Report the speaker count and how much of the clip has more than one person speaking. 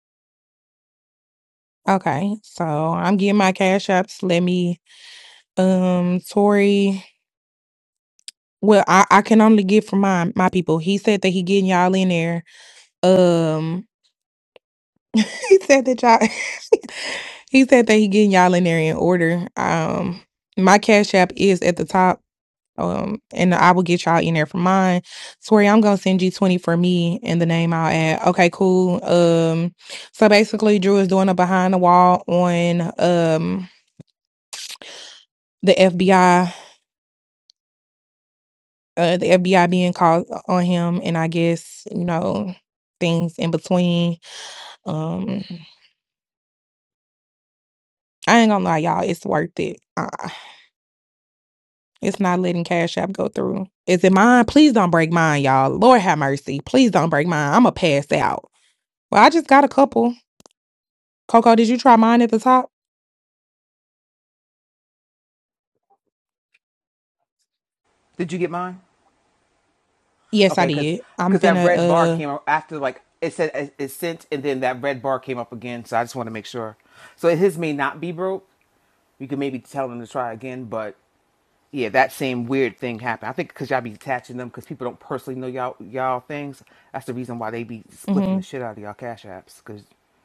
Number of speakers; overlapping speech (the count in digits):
2, about 2%